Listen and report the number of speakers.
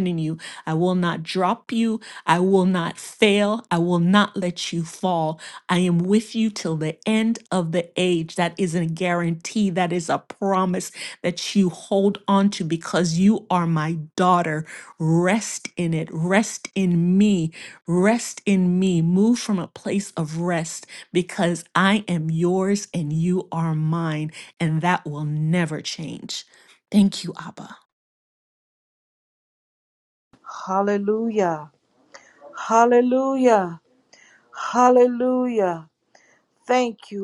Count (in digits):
2